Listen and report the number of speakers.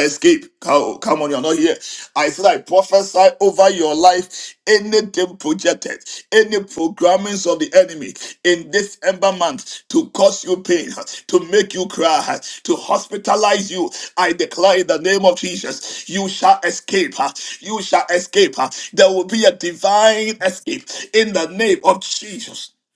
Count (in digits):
1